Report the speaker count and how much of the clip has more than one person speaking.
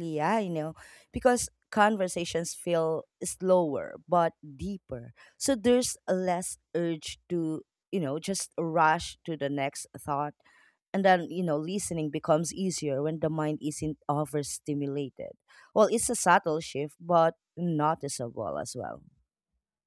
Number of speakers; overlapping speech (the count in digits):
1, no overlap